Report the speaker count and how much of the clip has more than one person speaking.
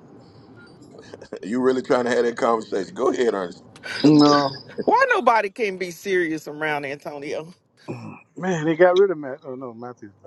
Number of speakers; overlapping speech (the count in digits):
3, no overlap